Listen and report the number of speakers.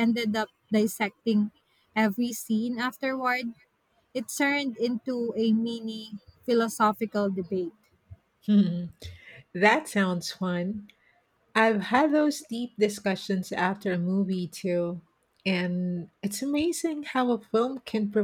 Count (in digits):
2